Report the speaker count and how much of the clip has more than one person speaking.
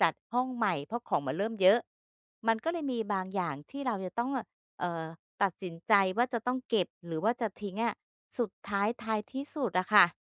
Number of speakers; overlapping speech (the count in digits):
1, no overlap